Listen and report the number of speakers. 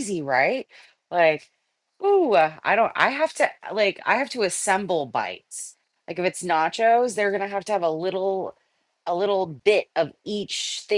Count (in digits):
1